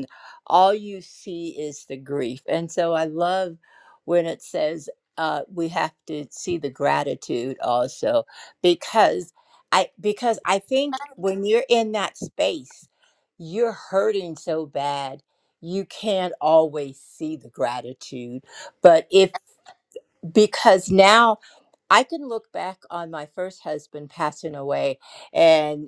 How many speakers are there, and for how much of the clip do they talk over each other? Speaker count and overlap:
one, no overlap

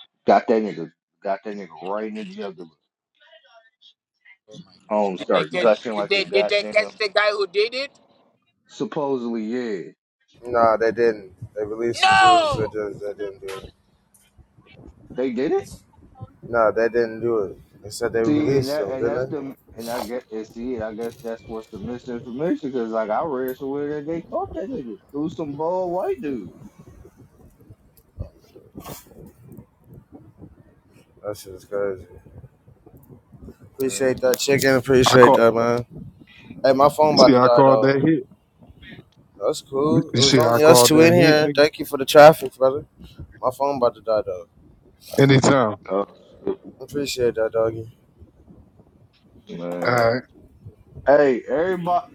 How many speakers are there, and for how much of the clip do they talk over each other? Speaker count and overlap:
four, about 13%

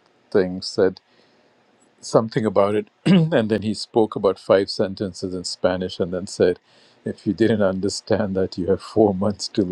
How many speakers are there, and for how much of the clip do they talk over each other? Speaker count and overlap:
one, no overlap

